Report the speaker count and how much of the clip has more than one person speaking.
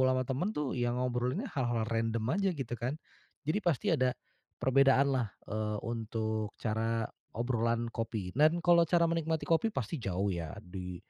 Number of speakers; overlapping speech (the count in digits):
1, no overlap